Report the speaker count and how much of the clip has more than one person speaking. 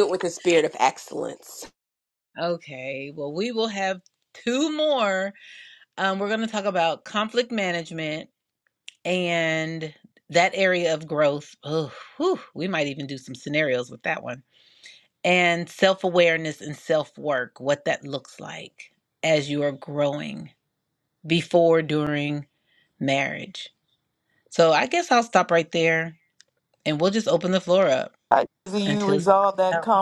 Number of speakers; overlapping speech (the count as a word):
three, about 2%